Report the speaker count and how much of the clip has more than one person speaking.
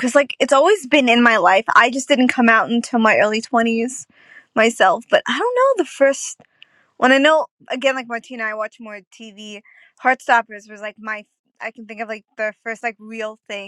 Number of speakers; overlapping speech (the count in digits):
1, no overlap